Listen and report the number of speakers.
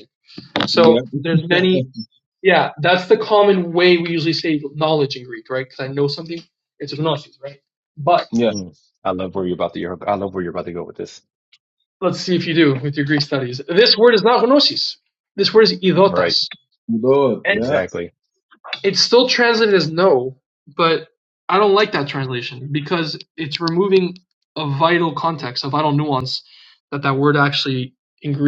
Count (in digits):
3